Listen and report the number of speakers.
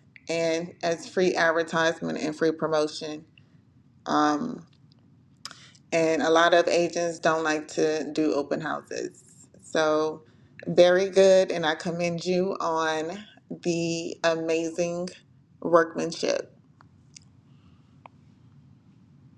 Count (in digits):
1